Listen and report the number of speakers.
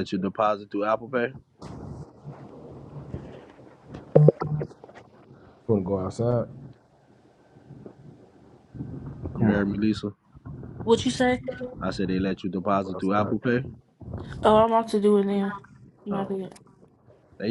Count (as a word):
three